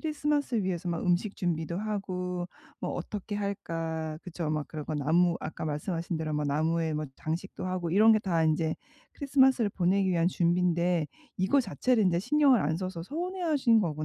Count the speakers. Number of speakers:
1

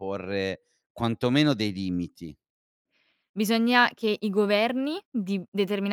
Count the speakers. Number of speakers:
2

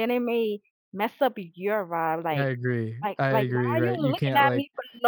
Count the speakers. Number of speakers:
2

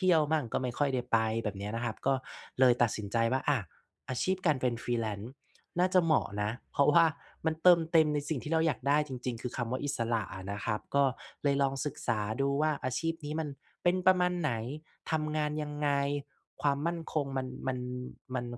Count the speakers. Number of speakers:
1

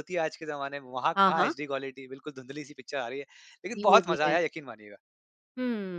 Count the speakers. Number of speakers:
2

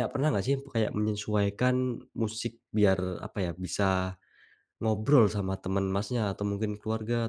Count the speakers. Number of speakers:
1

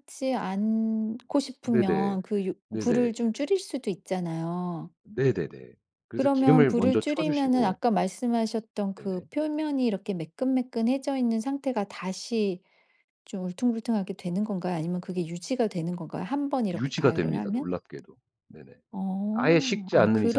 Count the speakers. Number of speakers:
2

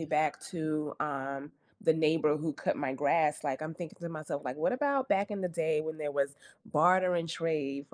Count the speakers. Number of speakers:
1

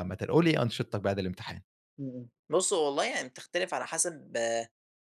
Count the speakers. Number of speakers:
2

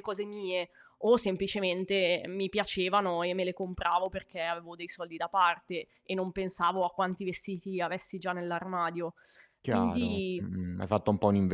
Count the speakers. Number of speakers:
2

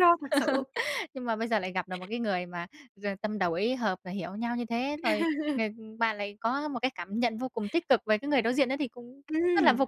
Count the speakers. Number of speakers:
2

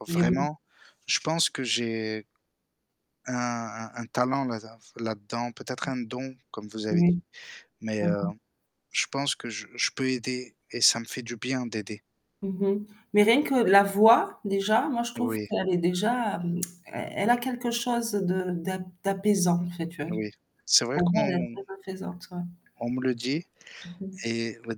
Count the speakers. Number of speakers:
2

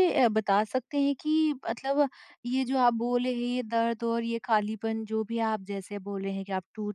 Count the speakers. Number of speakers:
1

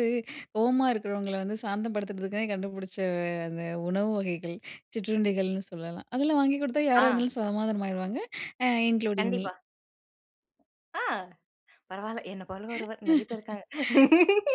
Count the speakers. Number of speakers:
2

